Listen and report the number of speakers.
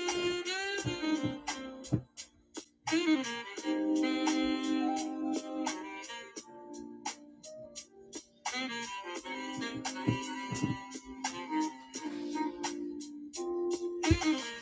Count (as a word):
zero